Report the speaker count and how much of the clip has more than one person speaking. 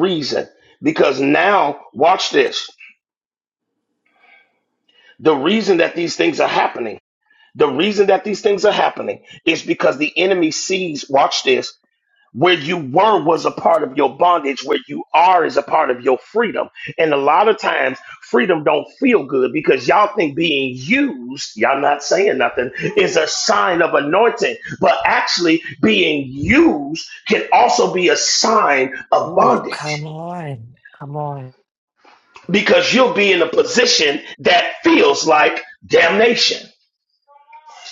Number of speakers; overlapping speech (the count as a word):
two, about 2%